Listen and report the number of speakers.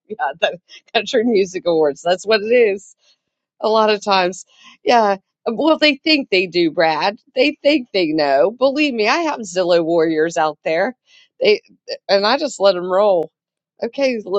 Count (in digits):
1